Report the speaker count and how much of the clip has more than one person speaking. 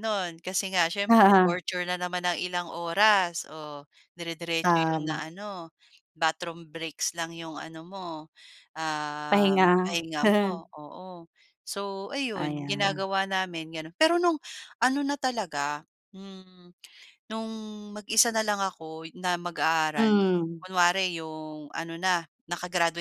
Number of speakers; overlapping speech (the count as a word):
two, about 10%